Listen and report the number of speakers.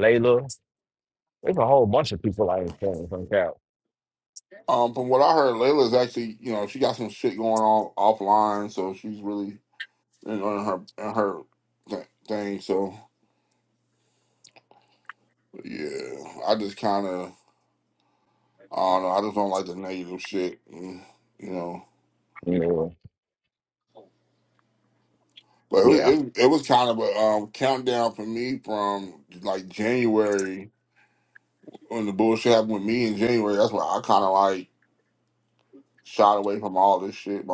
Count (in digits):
2